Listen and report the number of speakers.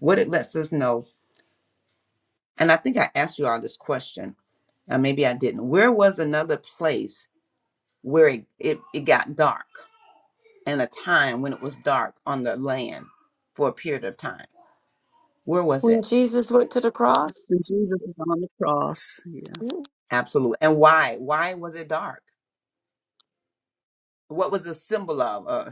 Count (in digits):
3